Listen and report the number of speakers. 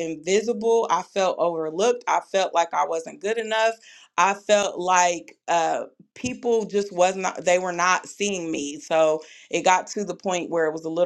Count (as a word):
one